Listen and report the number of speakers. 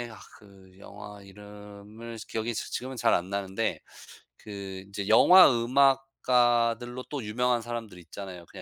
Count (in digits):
1